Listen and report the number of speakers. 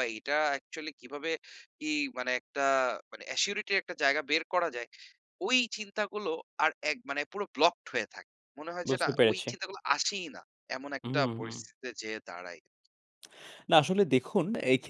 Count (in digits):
2